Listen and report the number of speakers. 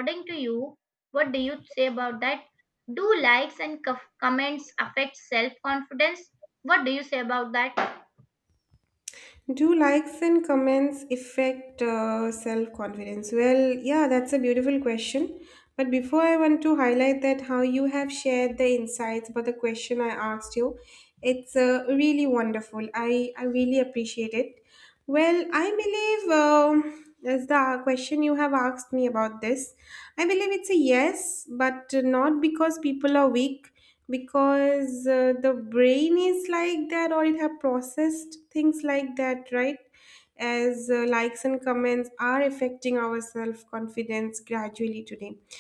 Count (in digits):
2